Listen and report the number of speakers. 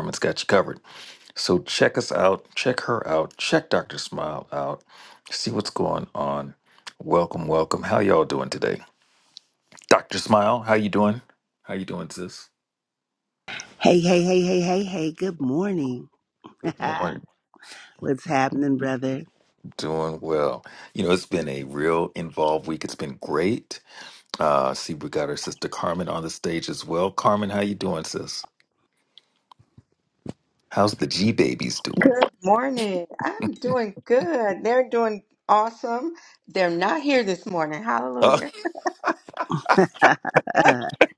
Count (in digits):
3